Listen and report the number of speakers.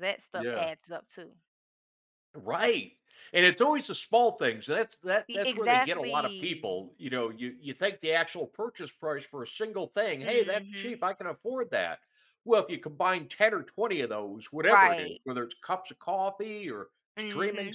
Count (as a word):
two